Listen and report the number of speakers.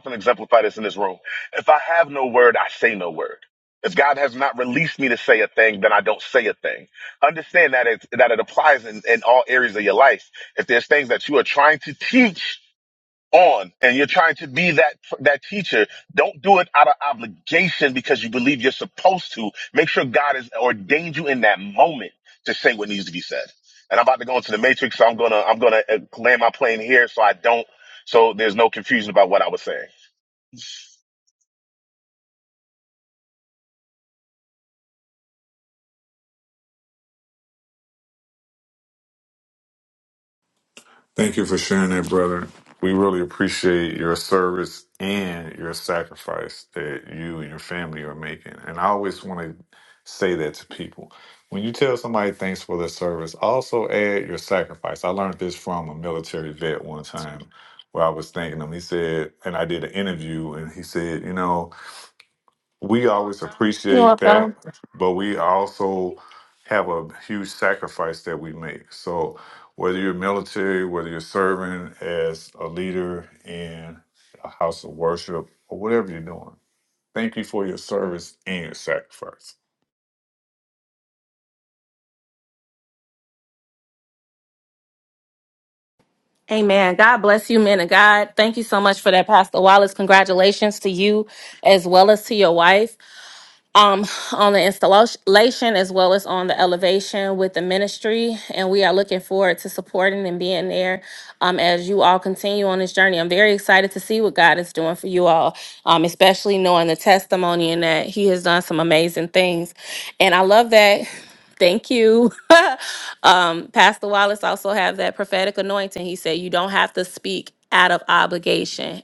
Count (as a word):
three